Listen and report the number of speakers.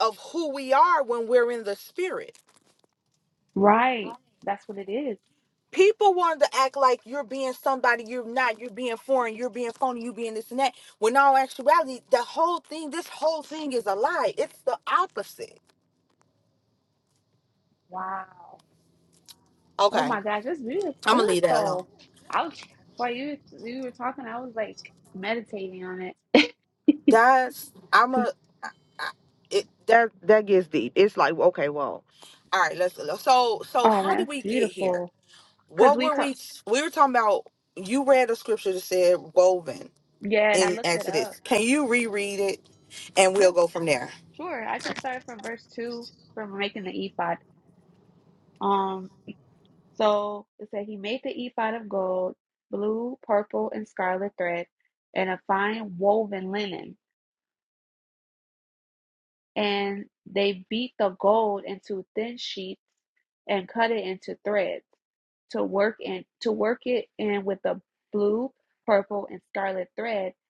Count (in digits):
2